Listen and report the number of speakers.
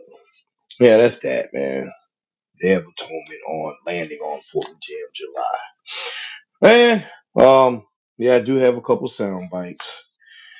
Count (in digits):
1